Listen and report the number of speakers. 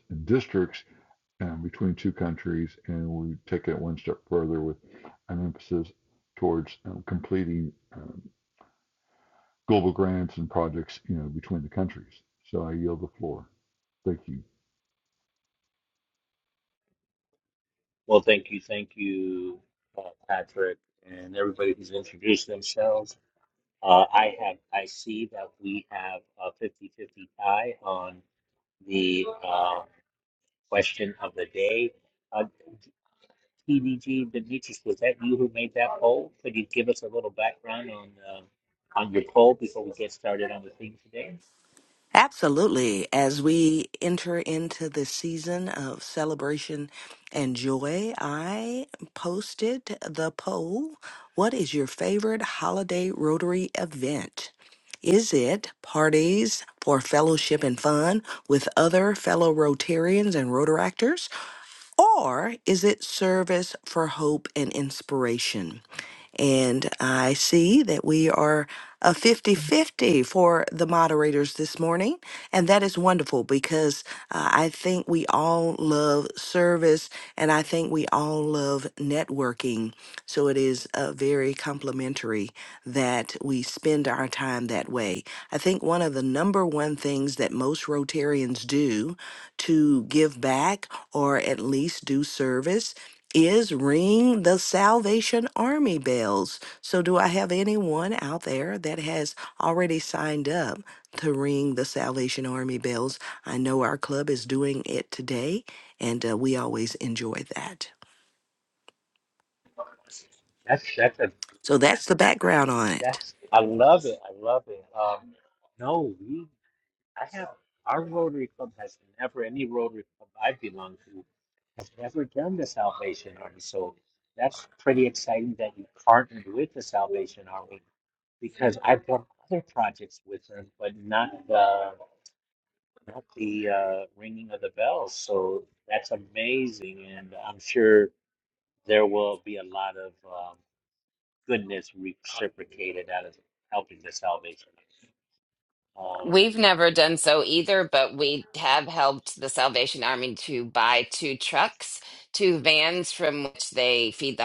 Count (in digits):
4